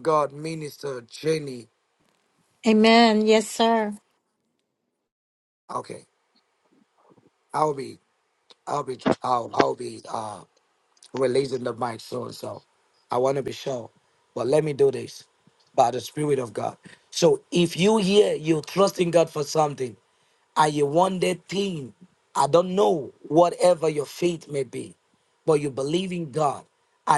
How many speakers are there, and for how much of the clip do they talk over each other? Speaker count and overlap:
2, no overlap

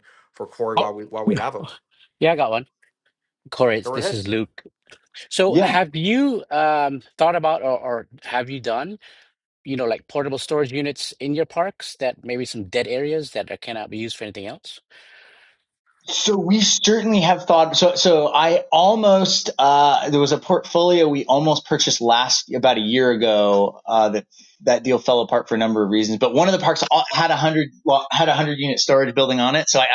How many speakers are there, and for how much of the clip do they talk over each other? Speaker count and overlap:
3, about 2%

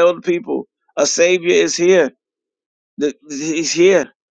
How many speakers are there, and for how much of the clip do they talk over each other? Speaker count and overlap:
1, no overlap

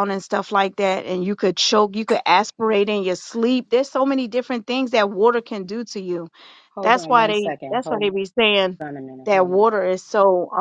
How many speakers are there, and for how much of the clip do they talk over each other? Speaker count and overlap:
2, about 16%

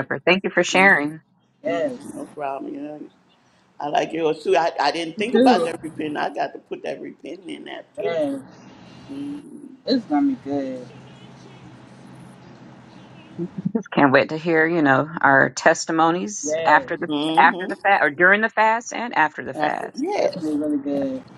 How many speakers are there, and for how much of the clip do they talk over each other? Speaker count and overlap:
3, about 14%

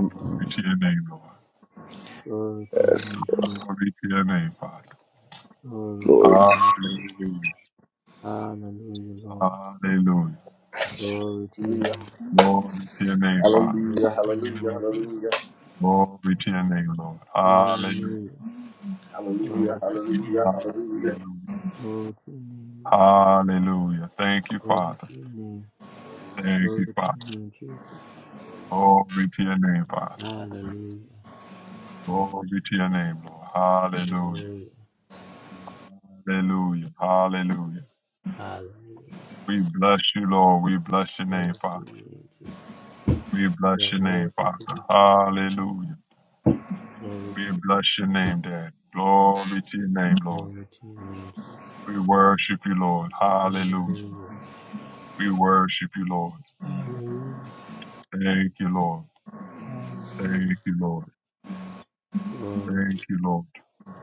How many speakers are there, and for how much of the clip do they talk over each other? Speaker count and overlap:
3, about 16%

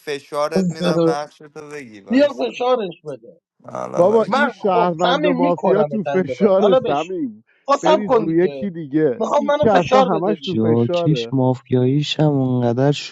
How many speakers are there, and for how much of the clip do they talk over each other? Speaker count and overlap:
4, about 49%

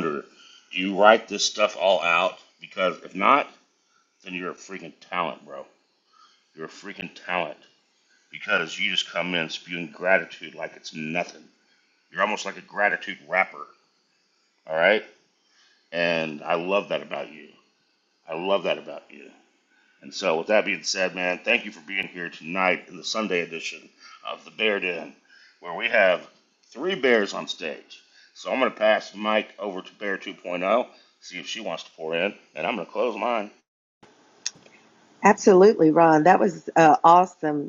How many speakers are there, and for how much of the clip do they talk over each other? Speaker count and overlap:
2, no overlap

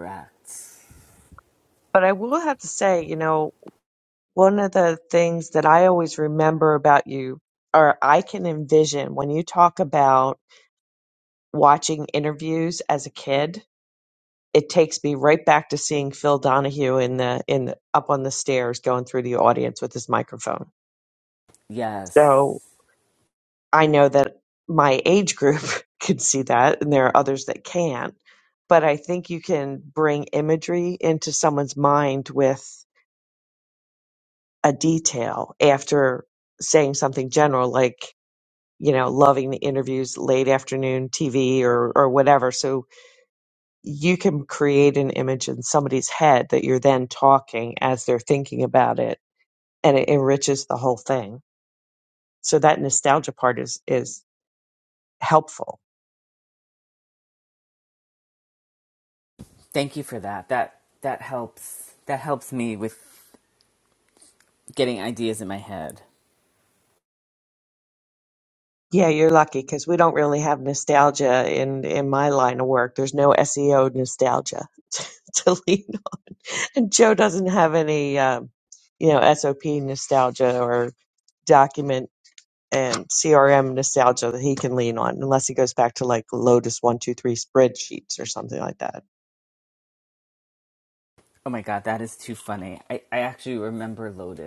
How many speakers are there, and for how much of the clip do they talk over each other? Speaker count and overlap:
2, no overlap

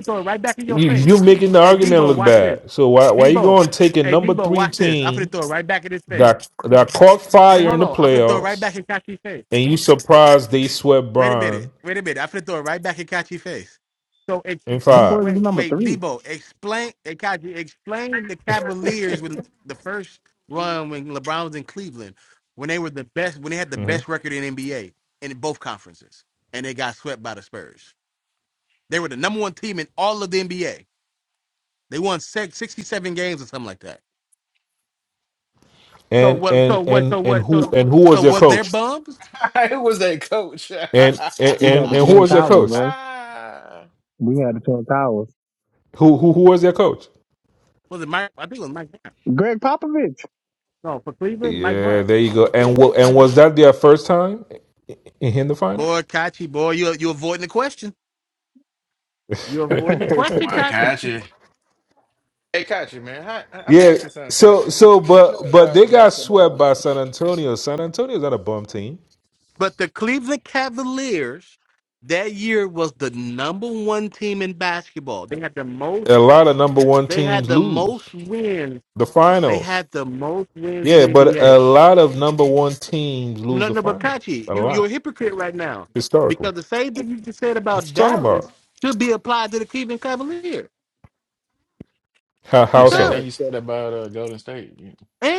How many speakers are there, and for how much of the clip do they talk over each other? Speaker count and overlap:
4, about 18%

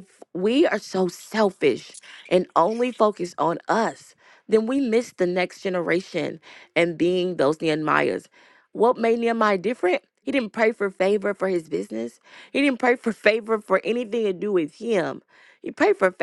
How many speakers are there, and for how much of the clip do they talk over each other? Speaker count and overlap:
1, no overlap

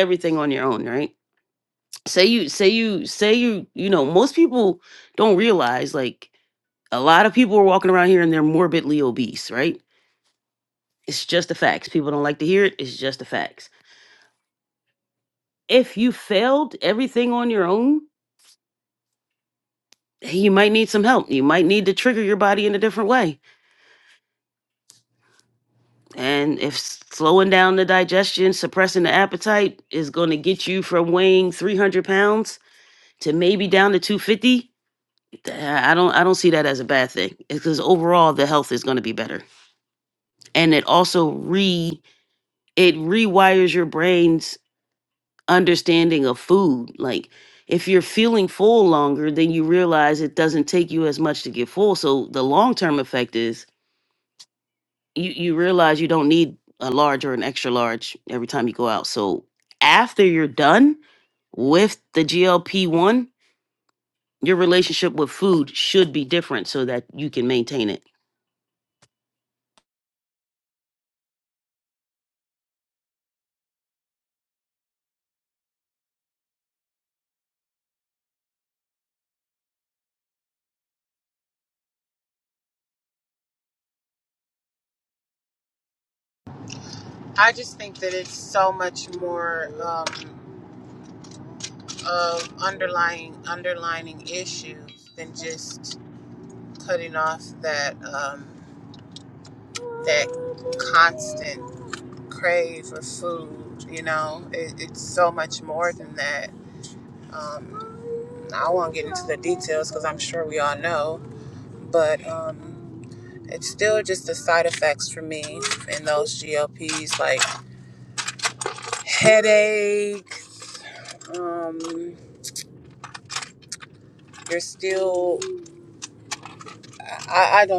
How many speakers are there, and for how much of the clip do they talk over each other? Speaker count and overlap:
2, no overlap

